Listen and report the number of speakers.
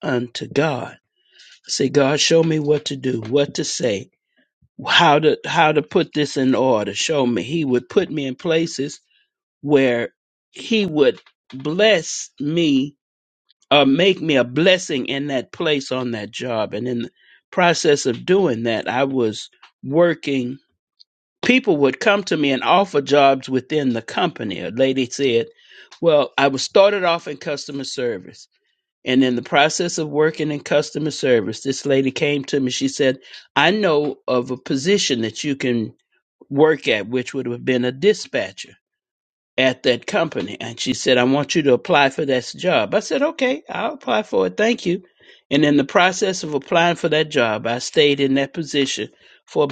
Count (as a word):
one